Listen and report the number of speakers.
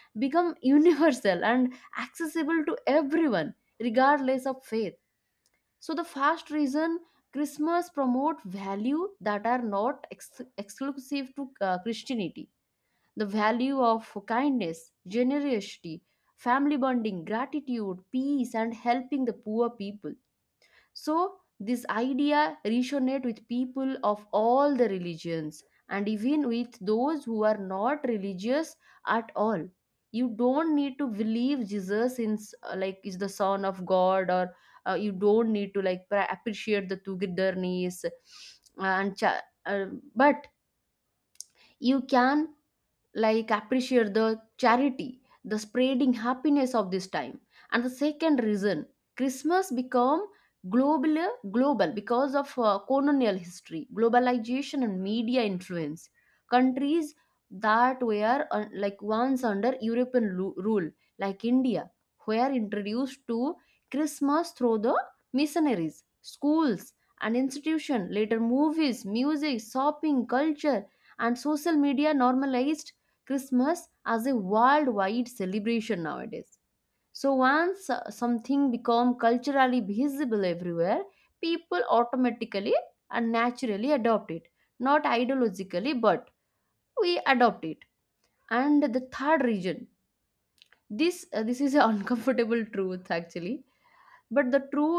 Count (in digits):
1